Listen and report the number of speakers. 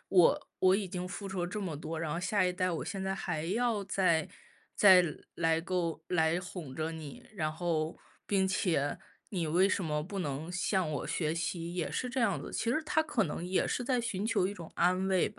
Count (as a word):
one